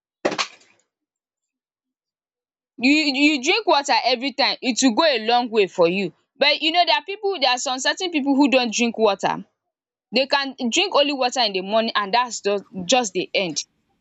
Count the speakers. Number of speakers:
one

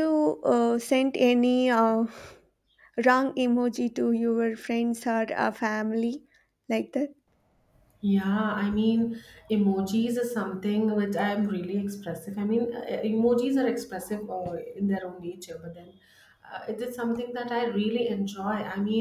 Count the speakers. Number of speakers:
two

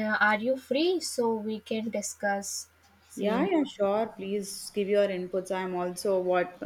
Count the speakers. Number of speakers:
two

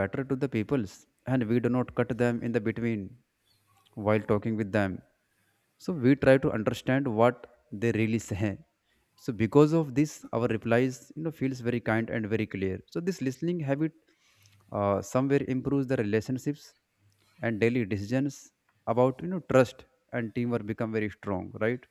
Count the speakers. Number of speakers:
one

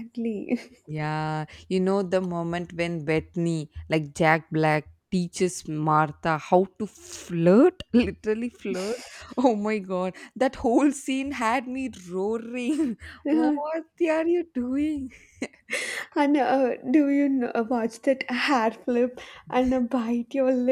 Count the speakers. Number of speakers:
two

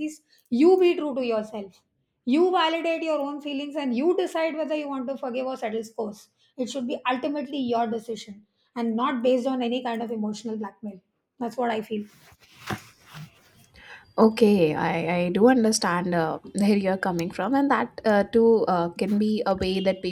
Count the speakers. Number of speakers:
two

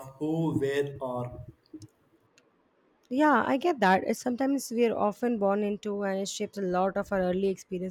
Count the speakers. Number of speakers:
two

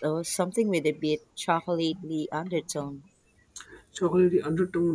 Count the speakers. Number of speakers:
two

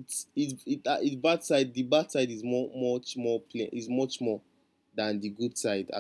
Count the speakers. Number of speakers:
one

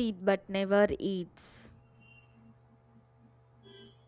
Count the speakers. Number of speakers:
one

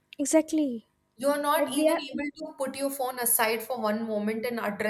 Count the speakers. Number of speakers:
two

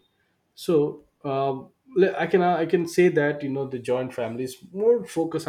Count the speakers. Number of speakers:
one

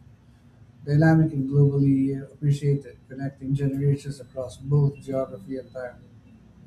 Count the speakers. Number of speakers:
one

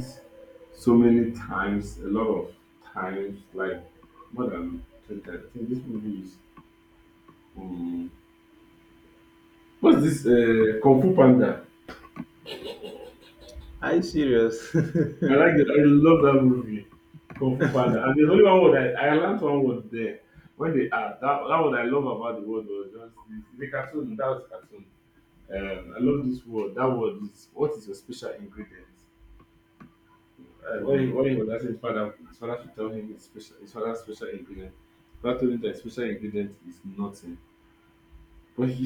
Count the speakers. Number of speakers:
two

